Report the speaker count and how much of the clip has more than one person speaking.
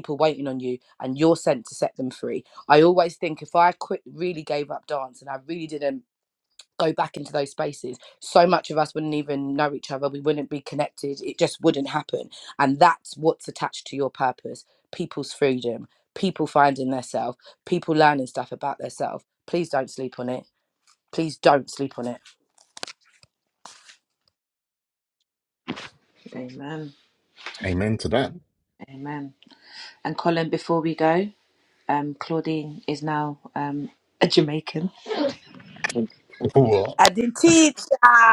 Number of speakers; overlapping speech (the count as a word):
three, no overlap